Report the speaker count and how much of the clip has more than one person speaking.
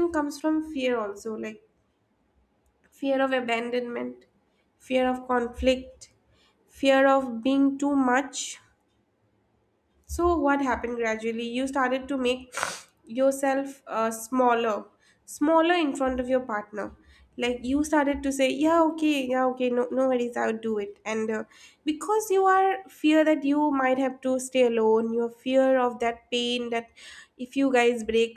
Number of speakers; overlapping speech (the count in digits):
1, no overlap